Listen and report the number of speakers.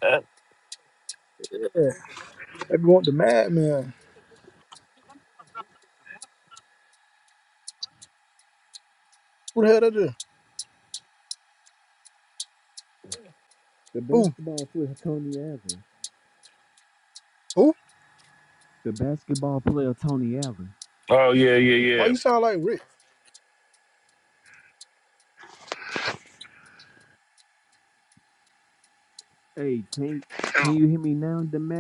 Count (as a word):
three